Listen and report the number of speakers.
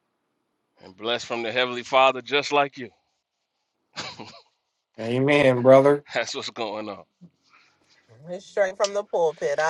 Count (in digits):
3